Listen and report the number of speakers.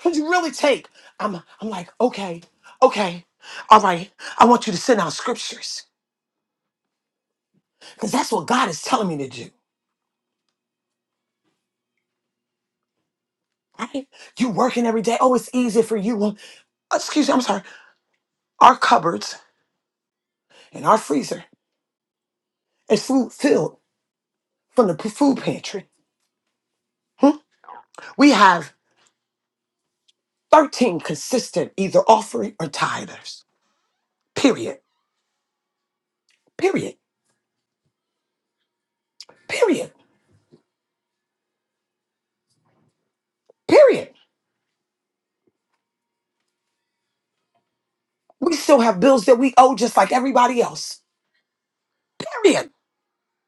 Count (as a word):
one